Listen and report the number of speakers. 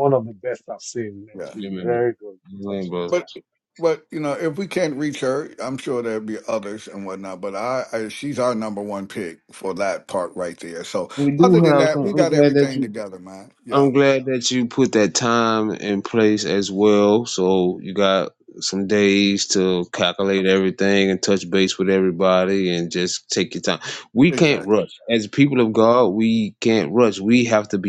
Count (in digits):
3